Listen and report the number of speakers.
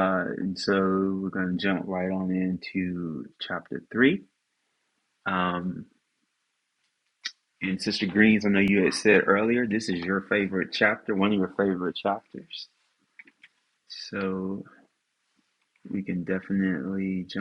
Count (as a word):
one